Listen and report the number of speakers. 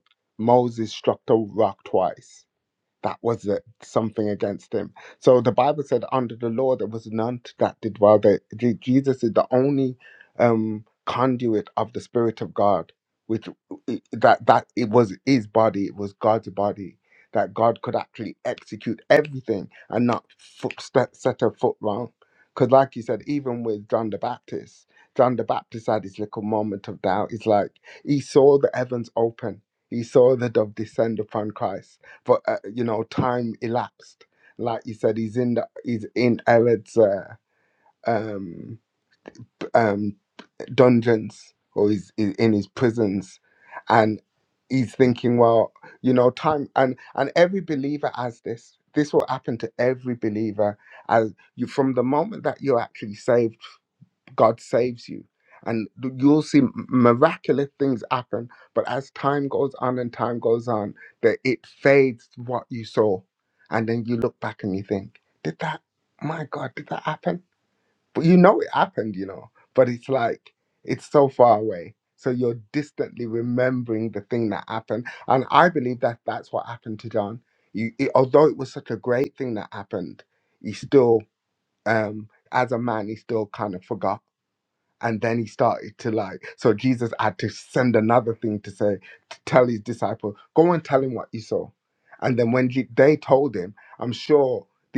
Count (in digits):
1